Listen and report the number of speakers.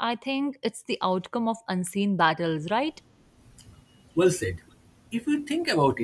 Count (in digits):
2